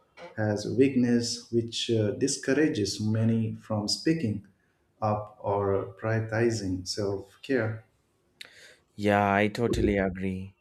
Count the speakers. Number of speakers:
2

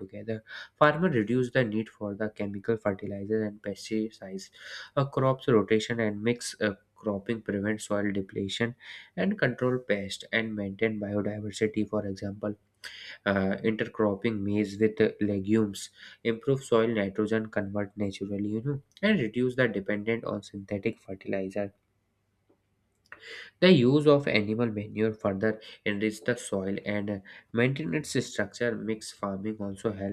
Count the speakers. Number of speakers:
1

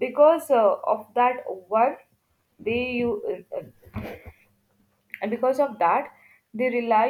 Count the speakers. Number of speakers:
1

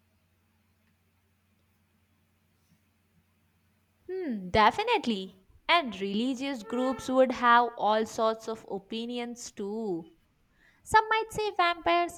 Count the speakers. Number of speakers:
1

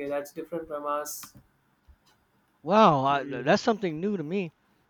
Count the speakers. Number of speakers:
2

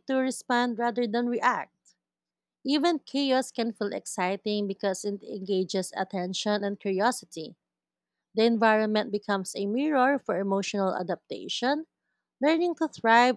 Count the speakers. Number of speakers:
1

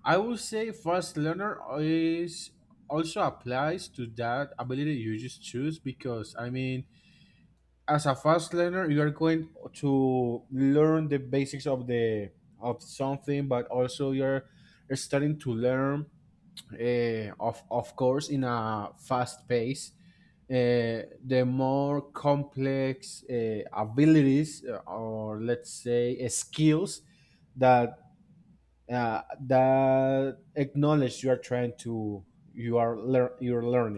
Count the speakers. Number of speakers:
1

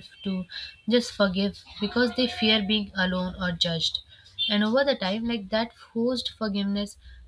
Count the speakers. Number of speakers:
1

